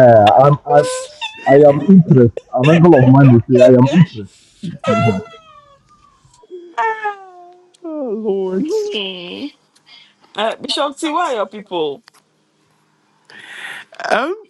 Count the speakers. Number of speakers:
3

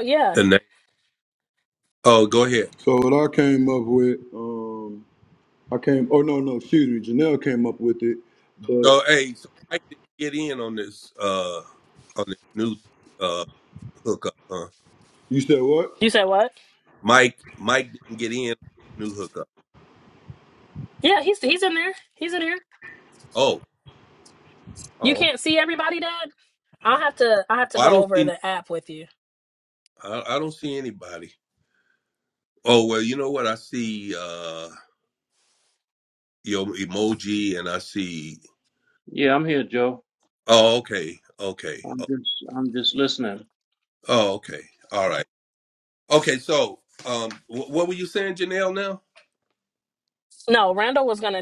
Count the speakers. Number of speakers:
4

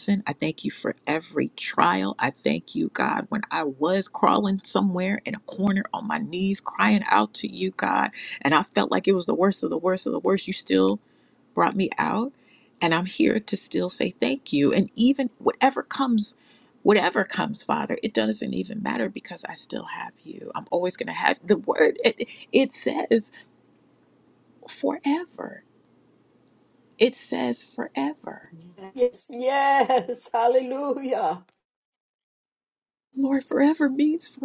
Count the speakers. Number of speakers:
2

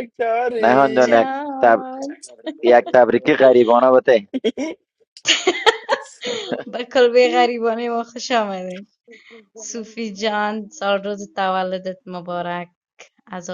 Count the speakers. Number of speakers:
3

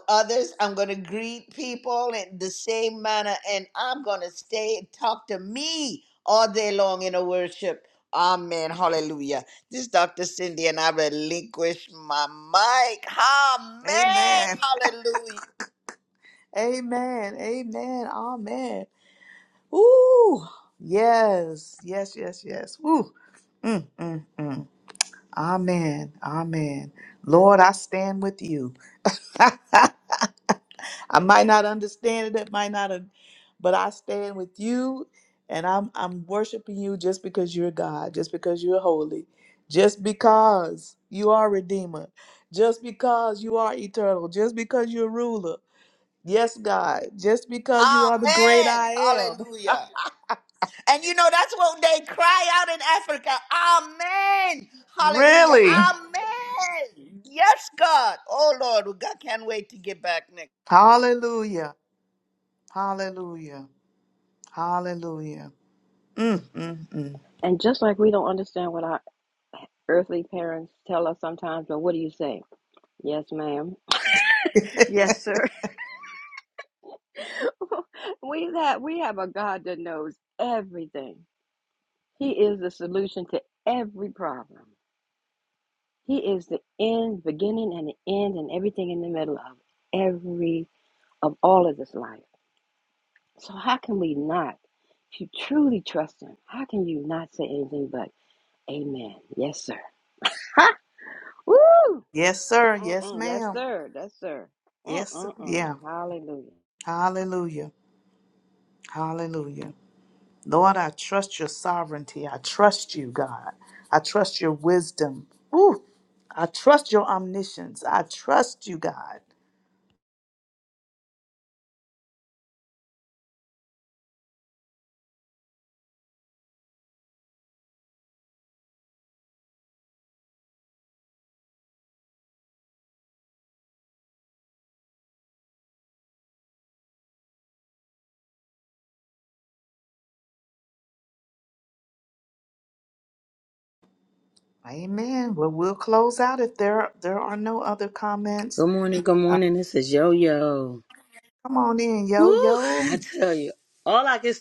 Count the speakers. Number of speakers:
4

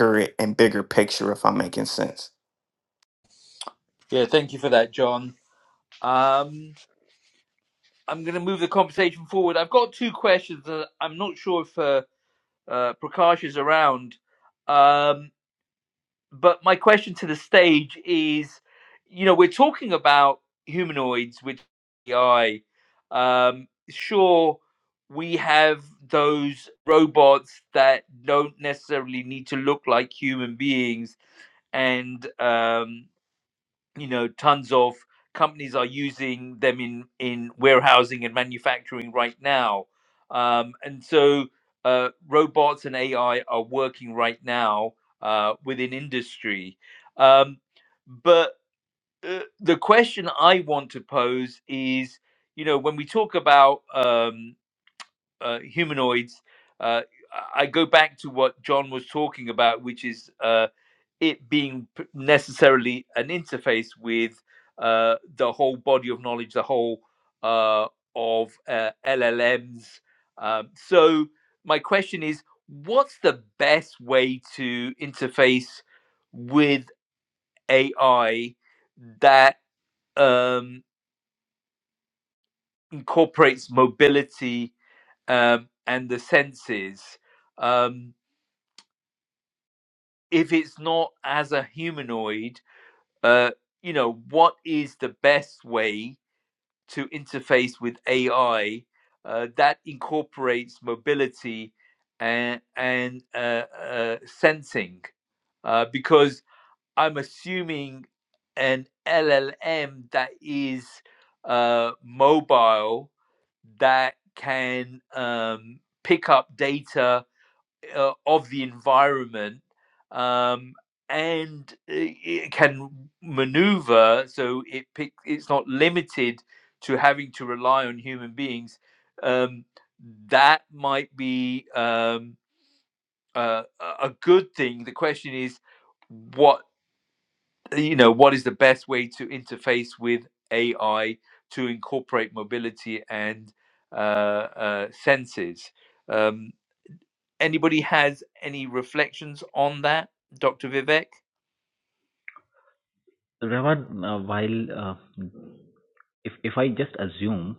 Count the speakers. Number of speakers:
3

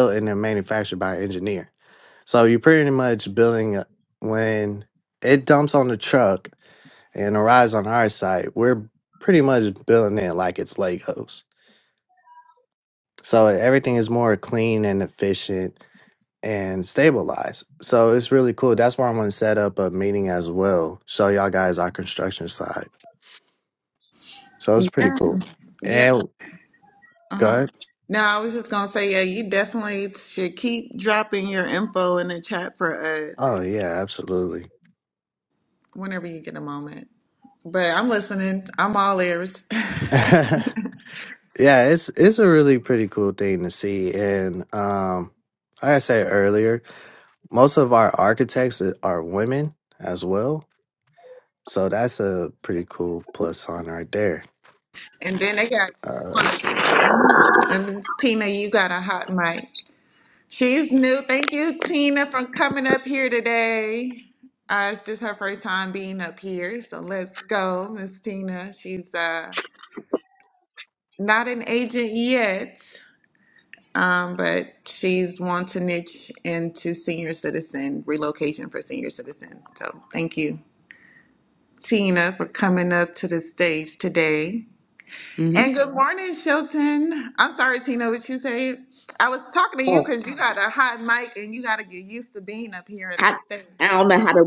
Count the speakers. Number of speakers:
3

